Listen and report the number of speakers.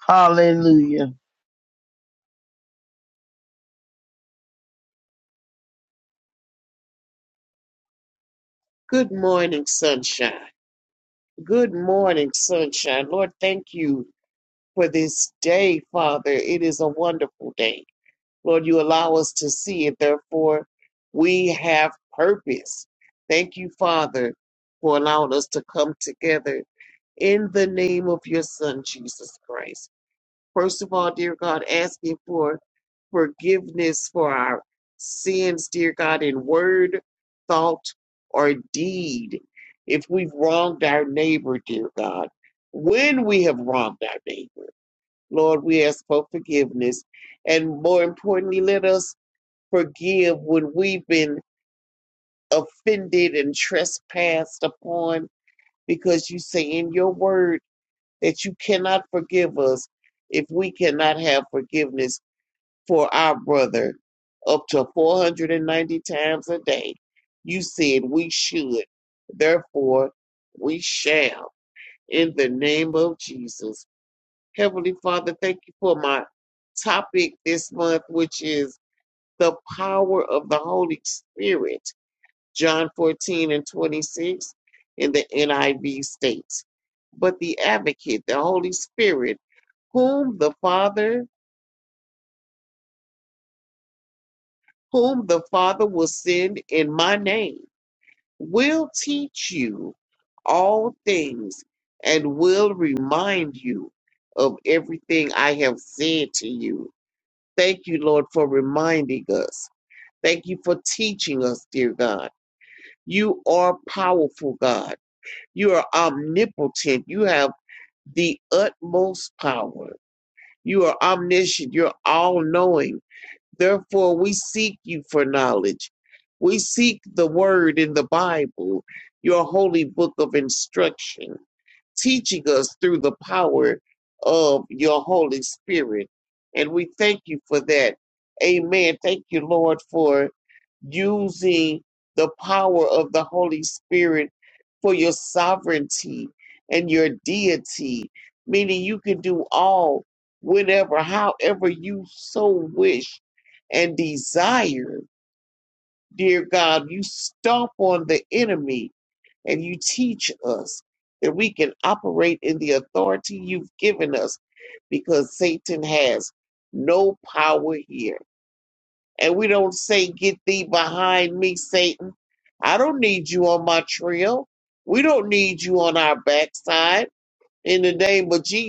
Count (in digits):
2